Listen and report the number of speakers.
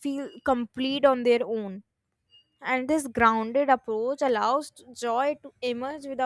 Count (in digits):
1